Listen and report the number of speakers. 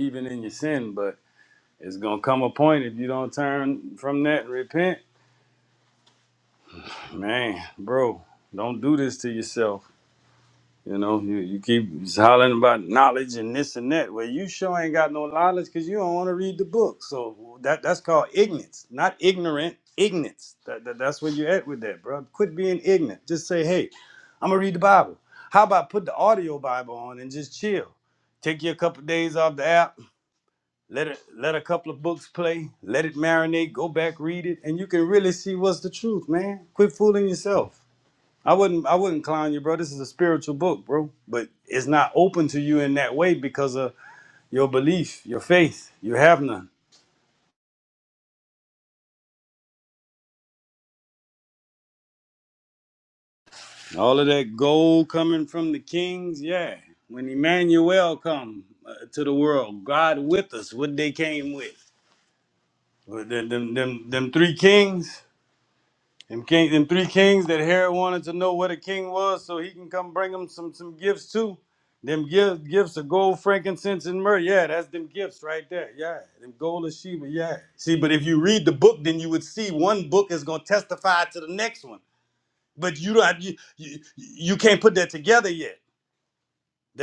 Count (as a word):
one